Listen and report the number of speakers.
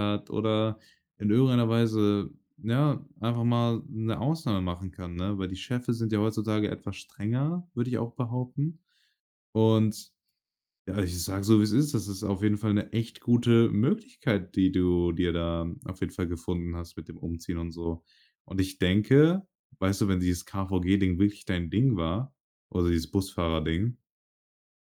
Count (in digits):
1